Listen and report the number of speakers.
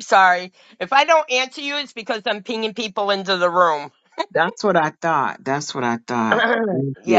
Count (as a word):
two